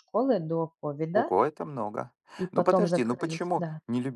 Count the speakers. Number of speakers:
2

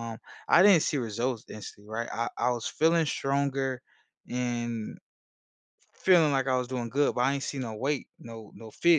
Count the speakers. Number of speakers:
1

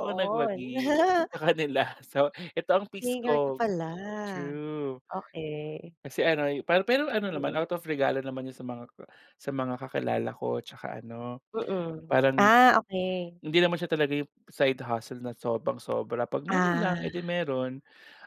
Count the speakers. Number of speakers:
2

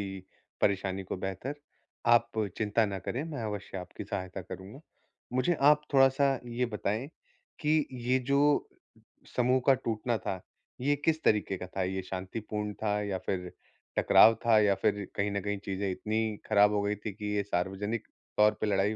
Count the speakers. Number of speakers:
1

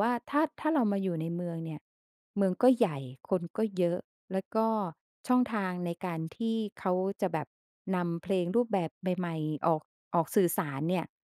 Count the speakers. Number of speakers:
1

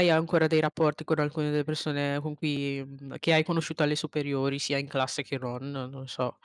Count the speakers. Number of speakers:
1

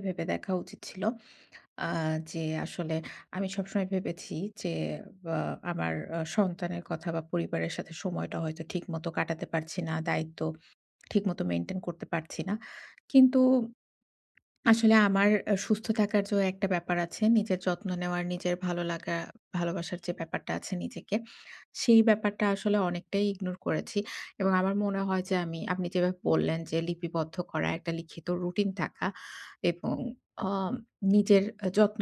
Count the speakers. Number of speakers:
1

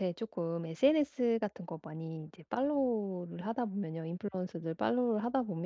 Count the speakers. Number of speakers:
1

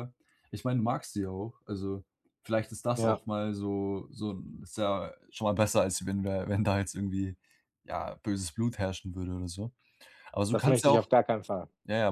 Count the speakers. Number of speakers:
2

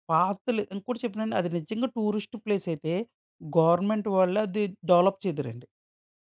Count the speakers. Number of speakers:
1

